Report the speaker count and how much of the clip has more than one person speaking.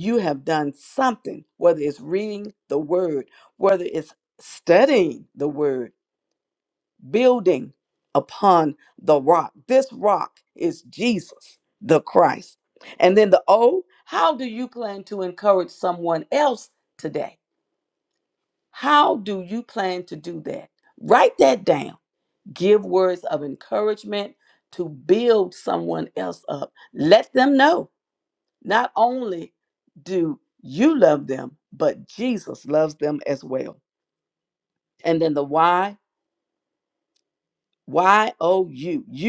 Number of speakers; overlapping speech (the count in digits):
1, no overlap